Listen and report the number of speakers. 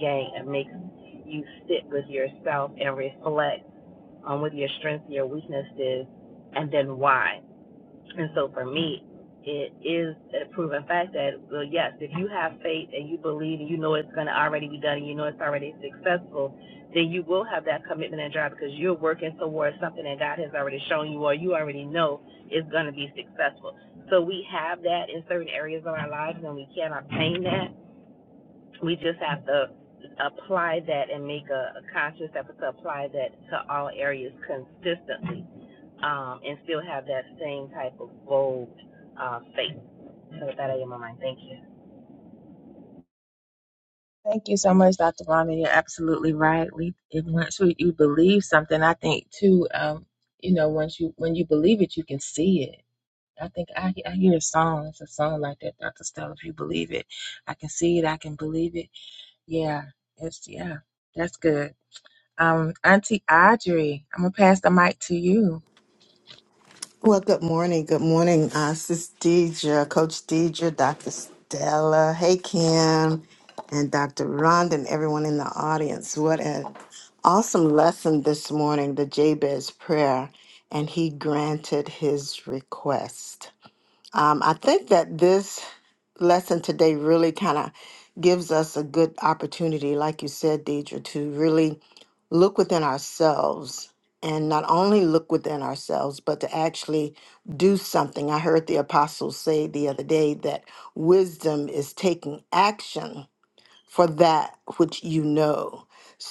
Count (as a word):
three